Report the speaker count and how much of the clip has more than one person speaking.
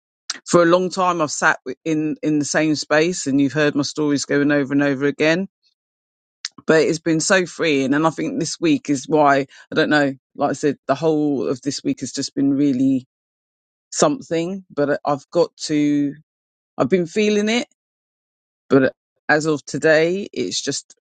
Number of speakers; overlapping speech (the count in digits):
1, no overlap